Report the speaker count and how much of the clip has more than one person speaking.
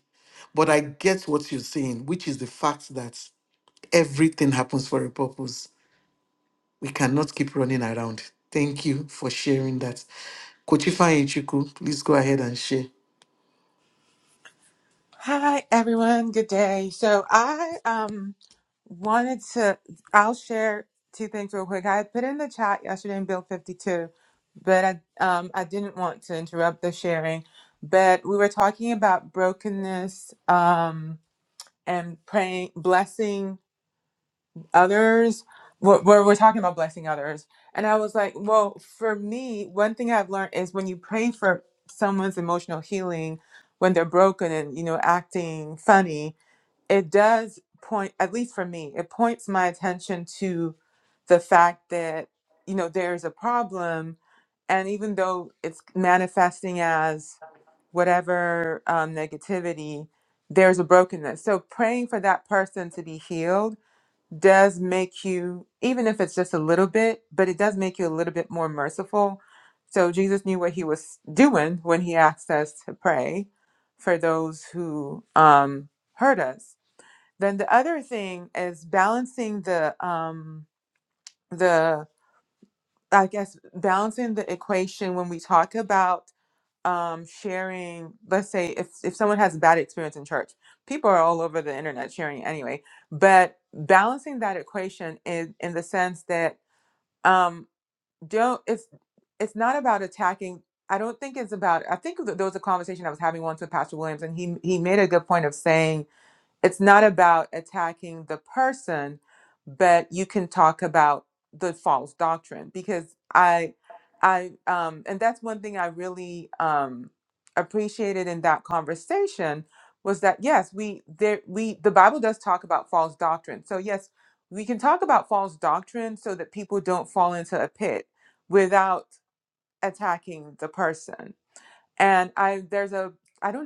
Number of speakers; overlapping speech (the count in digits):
2, no overlap